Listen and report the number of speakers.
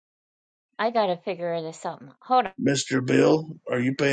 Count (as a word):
two